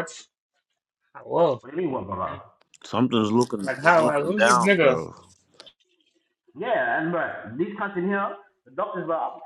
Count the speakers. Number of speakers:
3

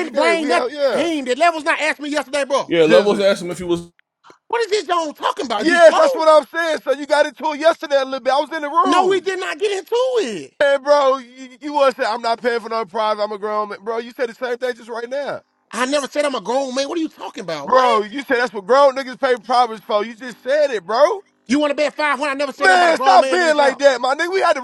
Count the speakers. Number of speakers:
3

